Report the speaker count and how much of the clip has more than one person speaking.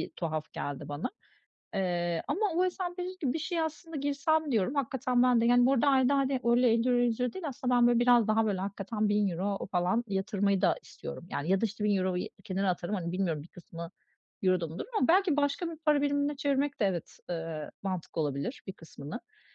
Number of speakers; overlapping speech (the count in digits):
1, no overlap